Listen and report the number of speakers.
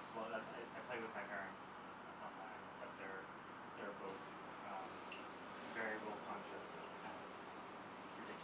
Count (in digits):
1